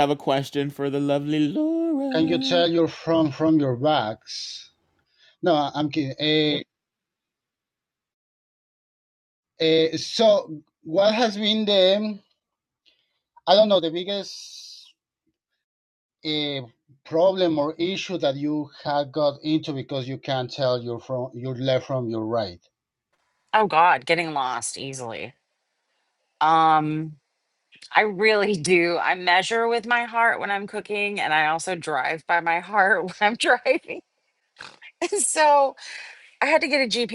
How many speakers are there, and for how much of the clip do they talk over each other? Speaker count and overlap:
three, about 1%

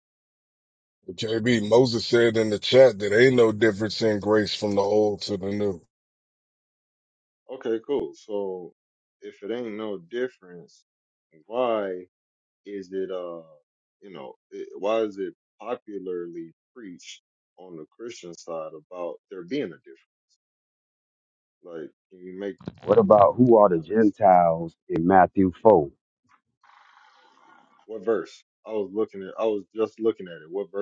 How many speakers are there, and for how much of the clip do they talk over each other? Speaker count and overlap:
three, about 2%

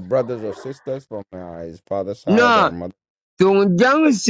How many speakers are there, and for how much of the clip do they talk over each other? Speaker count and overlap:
two, about 11%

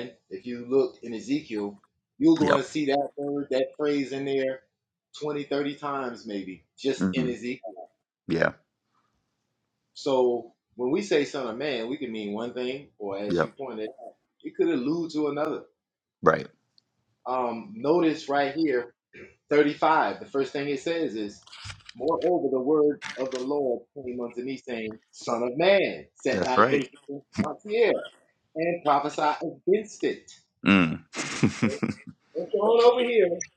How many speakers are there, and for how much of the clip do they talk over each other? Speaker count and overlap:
two, about 4%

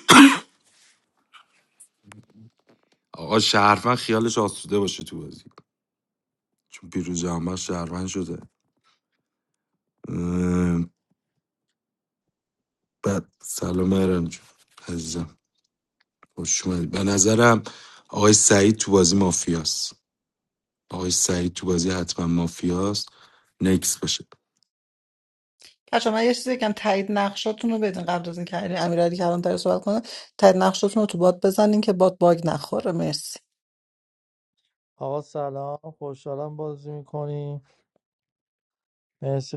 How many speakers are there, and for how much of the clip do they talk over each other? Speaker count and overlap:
three, no overlap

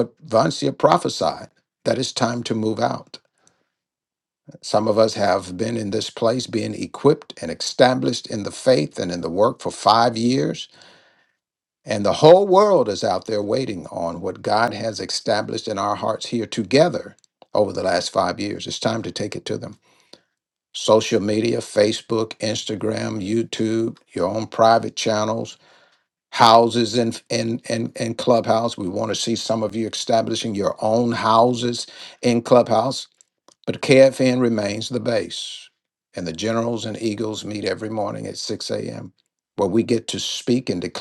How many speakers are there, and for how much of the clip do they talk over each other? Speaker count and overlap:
one, no overlap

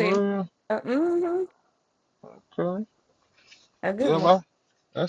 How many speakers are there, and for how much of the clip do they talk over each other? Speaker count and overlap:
two, about 10%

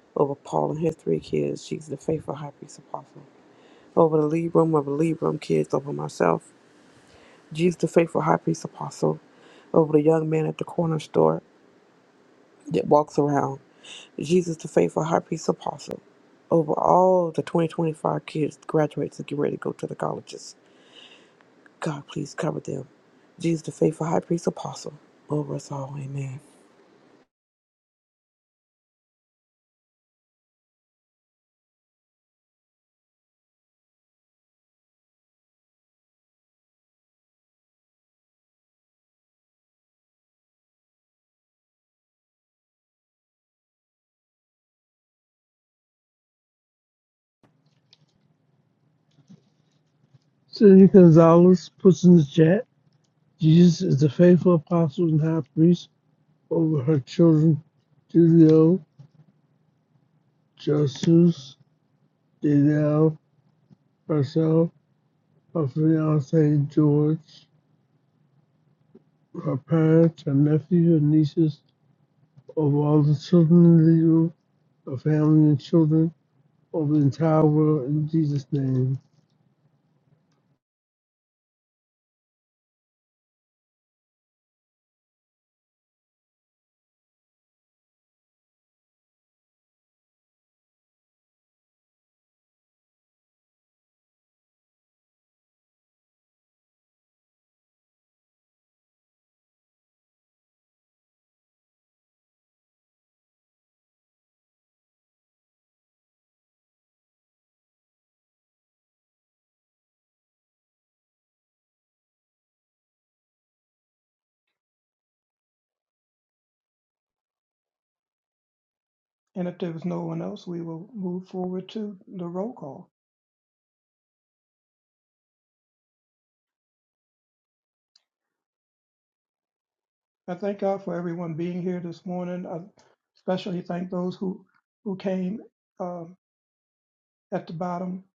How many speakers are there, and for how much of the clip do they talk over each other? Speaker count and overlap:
three, no overlap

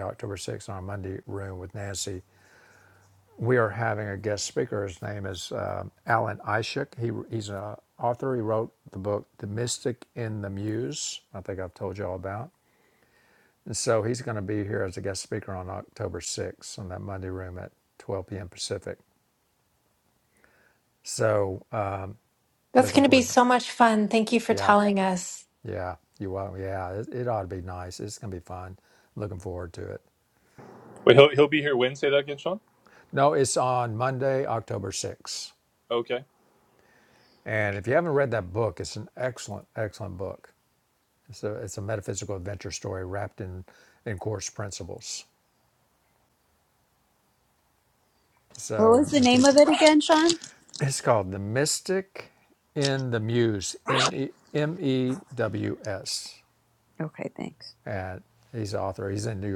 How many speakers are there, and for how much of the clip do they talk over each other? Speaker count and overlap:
four, about 3%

